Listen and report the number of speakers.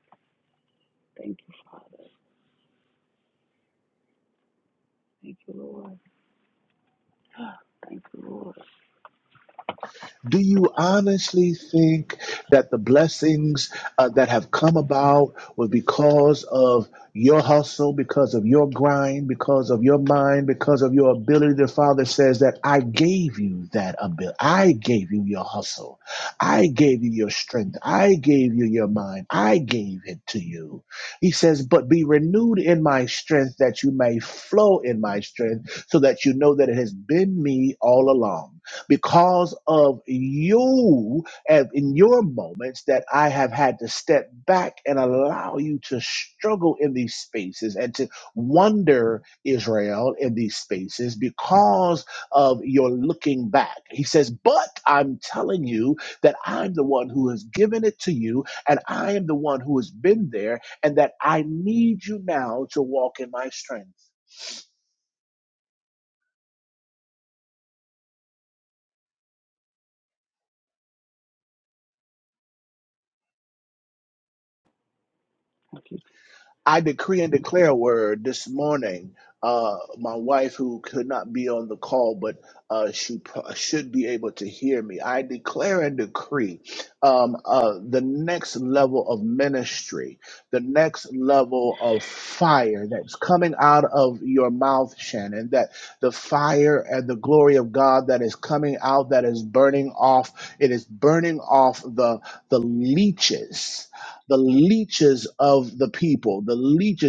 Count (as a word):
two